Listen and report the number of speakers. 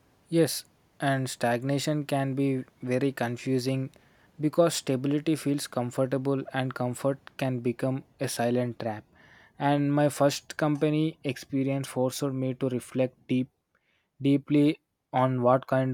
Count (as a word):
one